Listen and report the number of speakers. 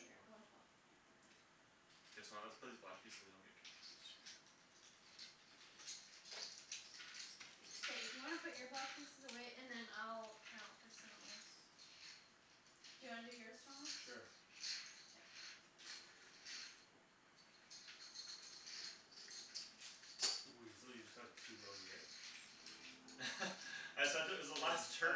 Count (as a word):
three